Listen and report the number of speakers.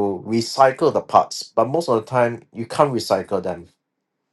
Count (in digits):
1